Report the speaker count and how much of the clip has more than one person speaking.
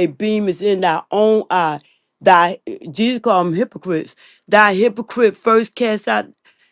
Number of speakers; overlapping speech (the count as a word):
one, no overlap